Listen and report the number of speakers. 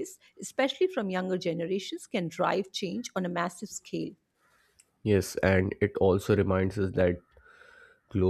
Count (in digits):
2